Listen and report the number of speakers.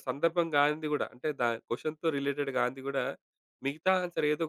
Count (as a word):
one